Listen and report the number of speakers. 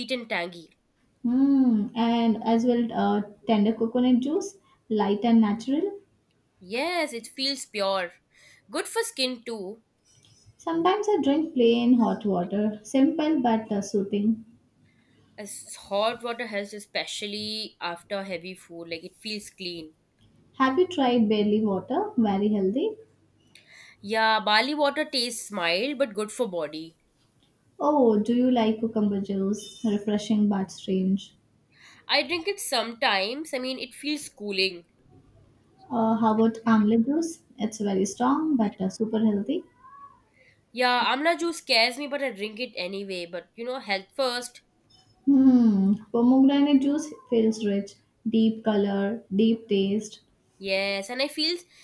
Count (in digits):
2